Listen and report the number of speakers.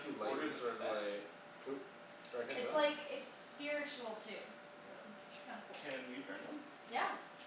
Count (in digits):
3